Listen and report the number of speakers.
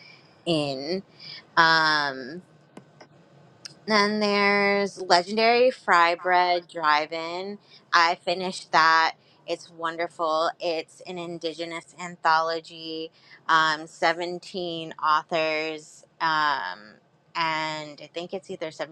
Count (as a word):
one